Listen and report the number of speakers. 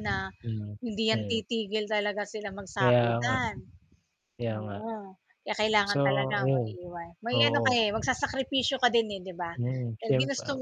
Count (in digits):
2